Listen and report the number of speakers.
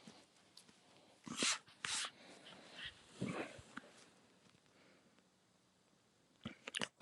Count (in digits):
0